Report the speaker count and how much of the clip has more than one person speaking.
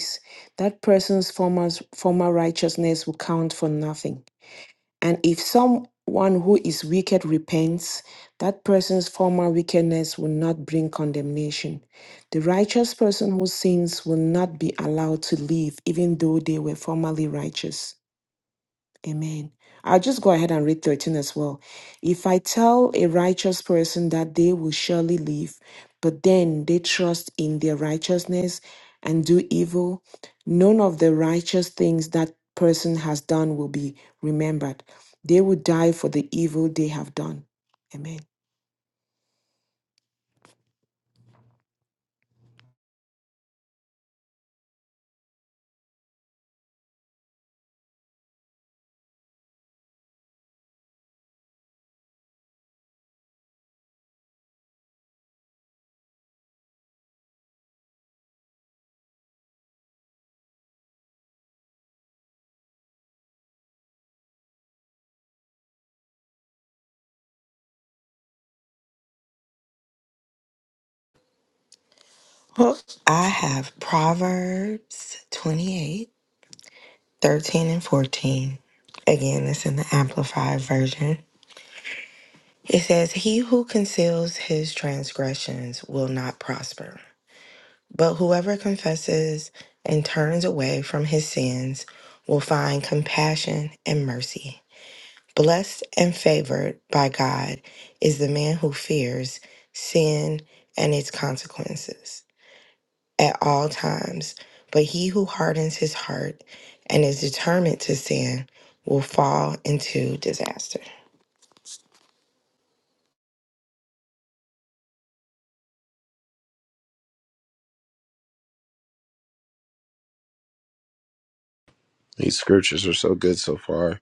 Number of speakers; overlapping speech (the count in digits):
3, no overlap